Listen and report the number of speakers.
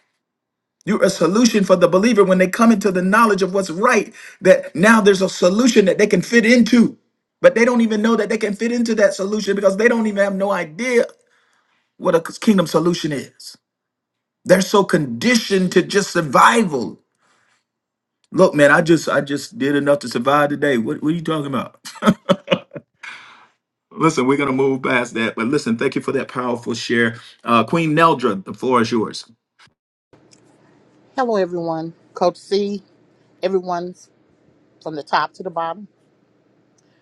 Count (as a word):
two